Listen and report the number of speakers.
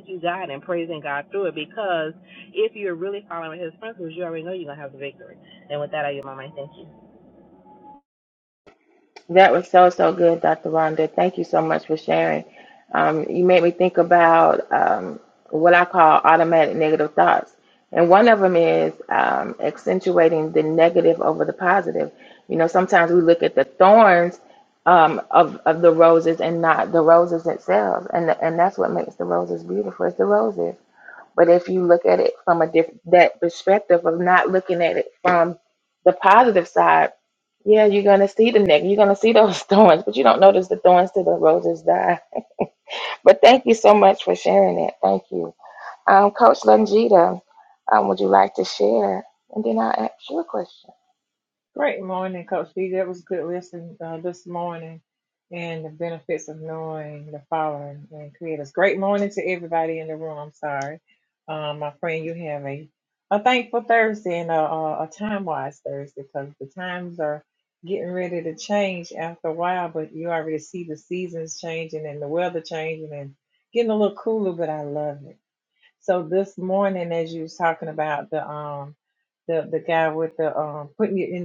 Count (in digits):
3